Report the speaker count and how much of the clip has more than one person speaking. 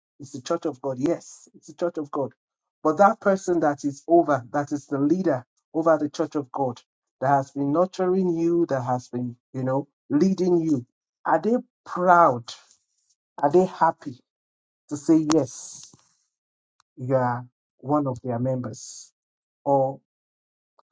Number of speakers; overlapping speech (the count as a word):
one, no overlap